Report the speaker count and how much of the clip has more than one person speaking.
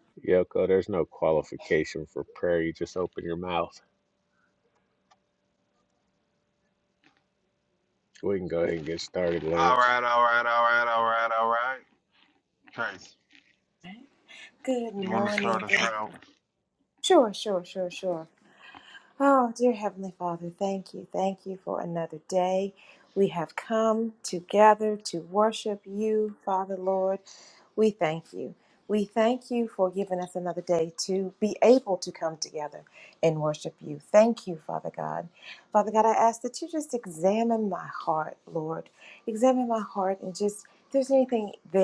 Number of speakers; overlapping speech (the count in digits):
3, about 3%